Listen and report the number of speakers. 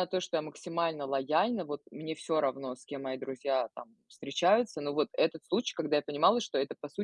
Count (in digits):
1